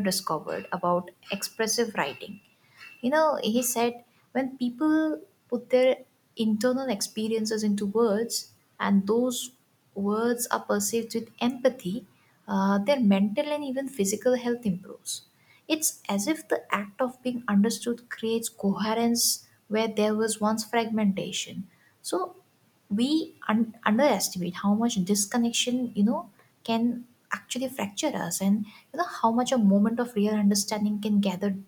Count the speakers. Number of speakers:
one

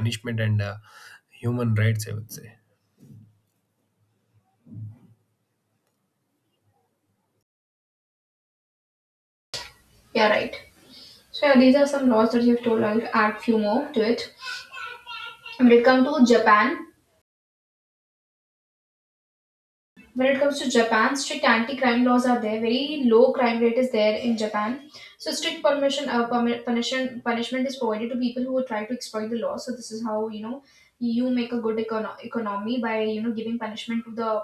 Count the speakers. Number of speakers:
two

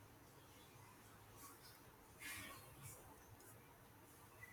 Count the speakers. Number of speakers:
zero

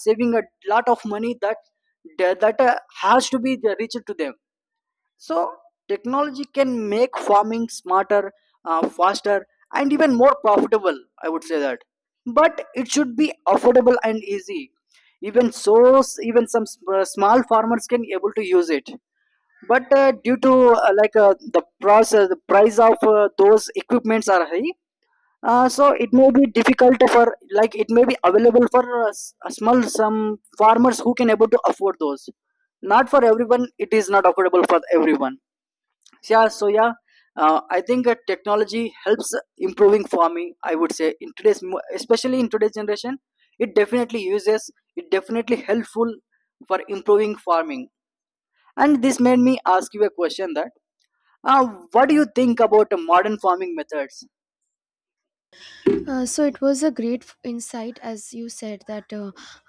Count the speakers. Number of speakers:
two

